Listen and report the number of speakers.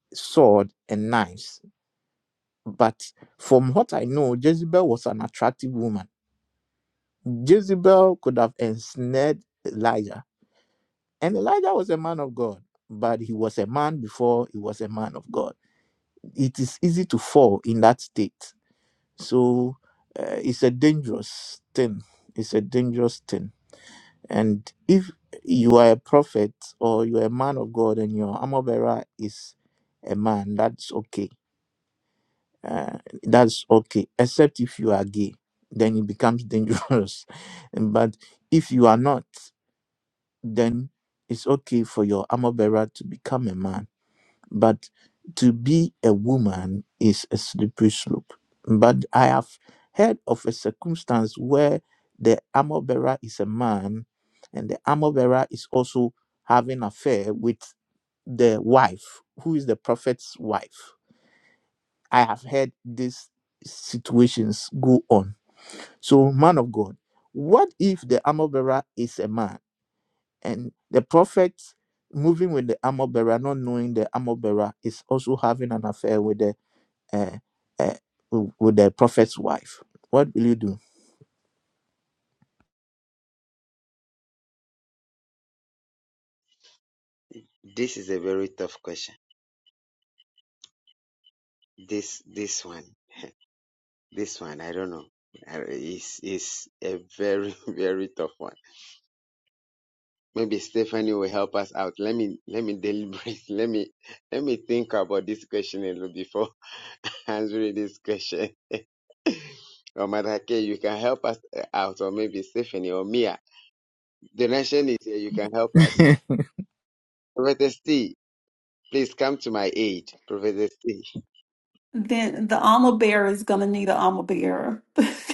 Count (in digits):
3